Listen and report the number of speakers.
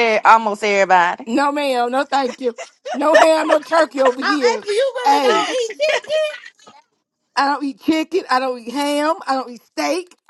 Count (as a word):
three